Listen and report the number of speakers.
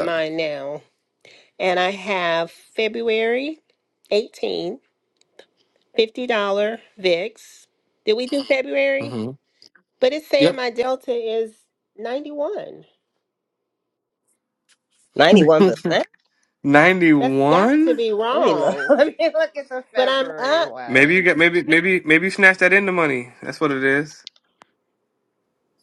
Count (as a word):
three